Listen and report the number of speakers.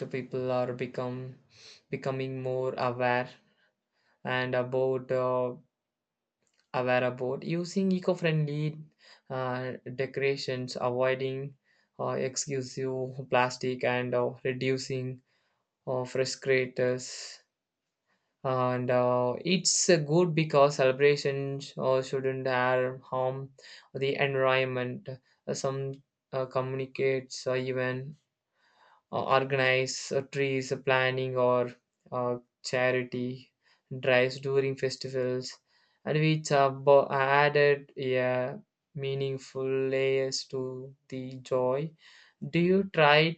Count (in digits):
1